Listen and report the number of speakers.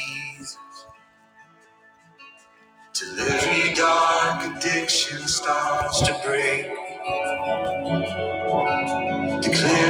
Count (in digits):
1